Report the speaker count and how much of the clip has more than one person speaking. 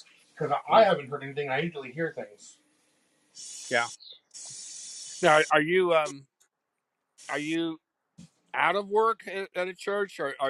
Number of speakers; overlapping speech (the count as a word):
two, about 1%